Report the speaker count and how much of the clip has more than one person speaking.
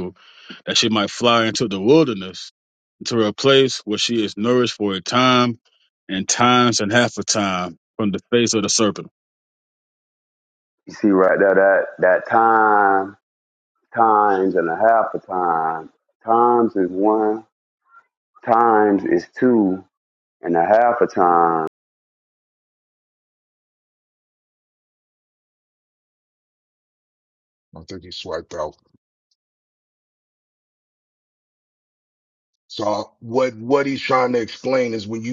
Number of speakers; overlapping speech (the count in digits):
3, no overlap